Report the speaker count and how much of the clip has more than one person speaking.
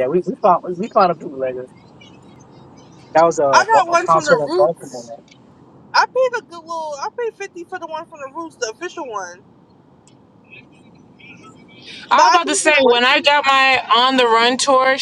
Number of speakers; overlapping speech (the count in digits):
3, about 18%